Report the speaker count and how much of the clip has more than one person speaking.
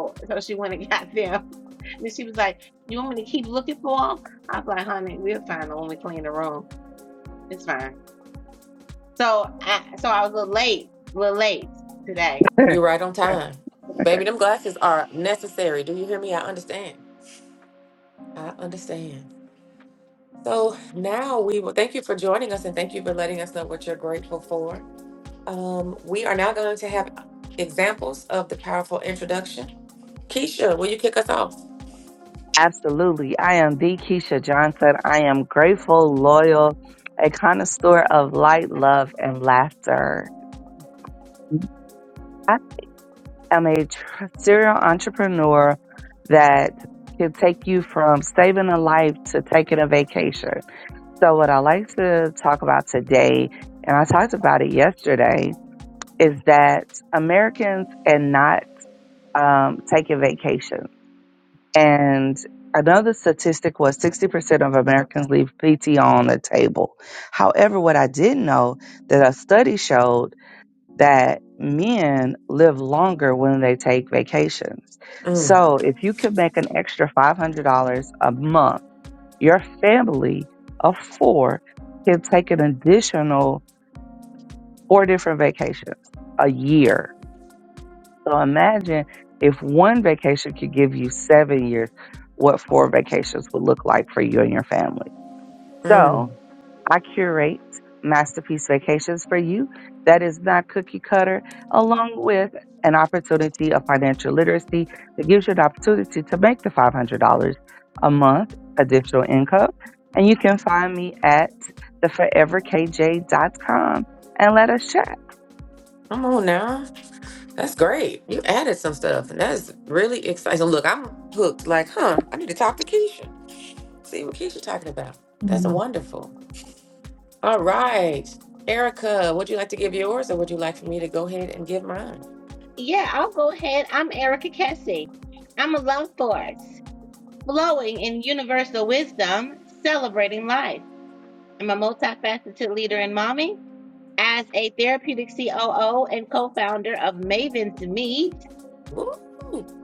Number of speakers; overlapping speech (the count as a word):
three, under 1%